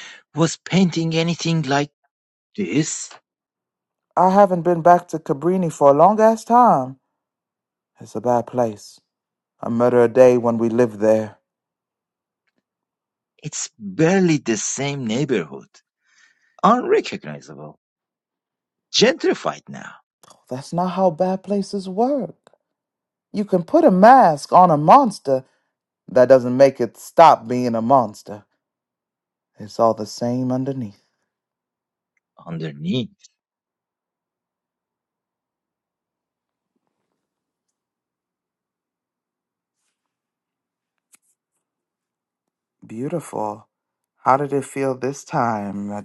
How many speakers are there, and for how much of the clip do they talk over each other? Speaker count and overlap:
2, no overlap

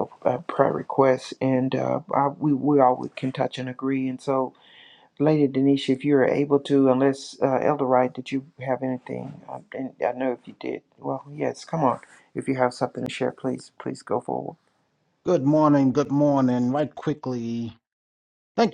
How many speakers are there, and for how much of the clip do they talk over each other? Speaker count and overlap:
2, no overlap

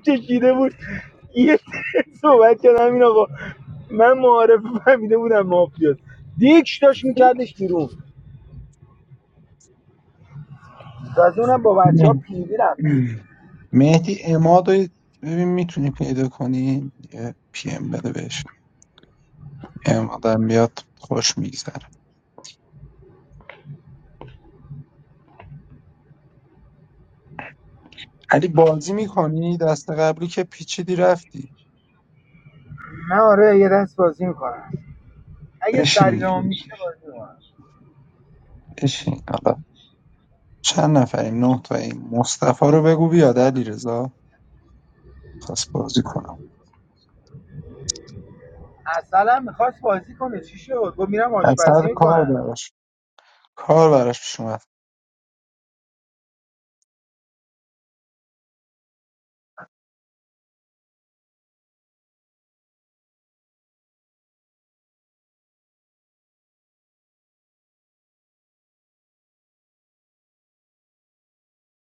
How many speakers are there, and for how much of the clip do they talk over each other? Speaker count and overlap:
2, about 3%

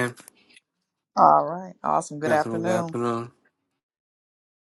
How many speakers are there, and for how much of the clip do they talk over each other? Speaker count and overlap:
2, about 14%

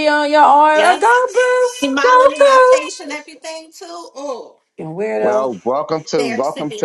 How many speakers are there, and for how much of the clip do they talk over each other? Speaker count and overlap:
3, about 44%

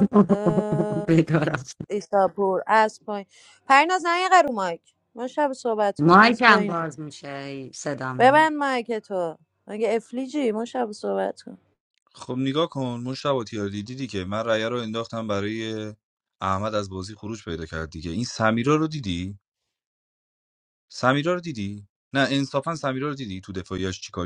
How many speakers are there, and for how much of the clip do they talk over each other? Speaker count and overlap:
3, about 5%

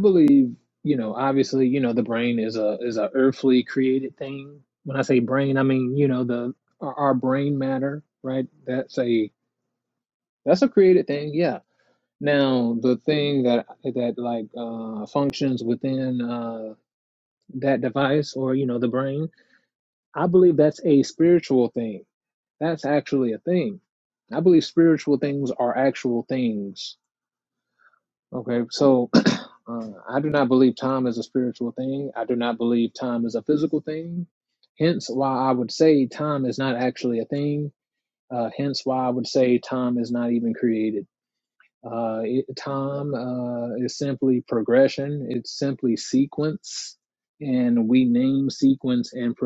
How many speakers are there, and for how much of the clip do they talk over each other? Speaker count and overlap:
1, no overlap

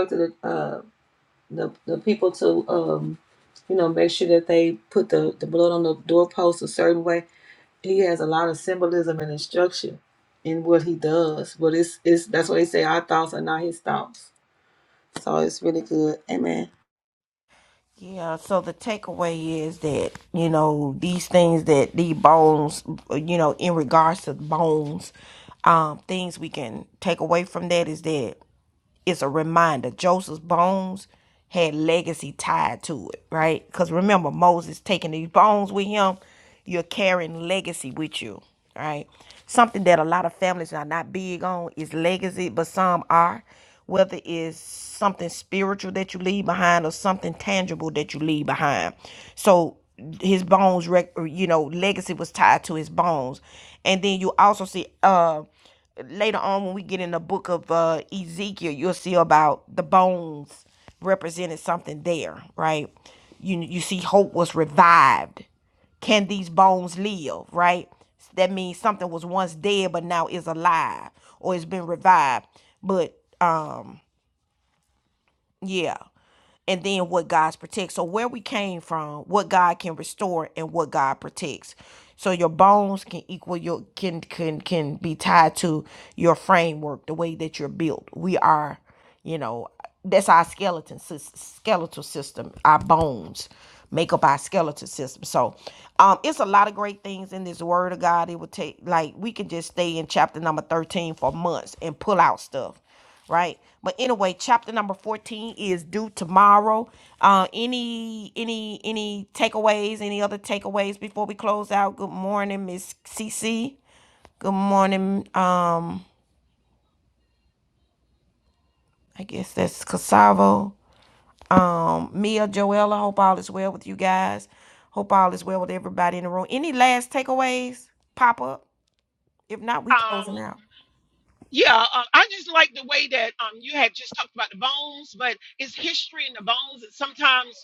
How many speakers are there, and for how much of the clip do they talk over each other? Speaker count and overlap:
3, under 1%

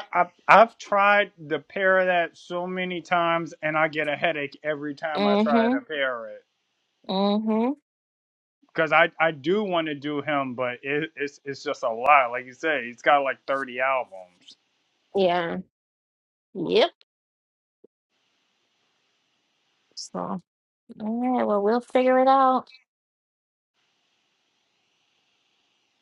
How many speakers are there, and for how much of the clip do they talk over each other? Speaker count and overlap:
2, about 3%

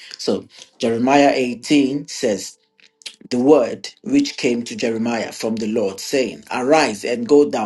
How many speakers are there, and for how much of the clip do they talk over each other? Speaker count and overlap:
1, no overlap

